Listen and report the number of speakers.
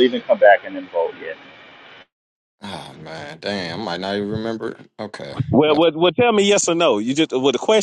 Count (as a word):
three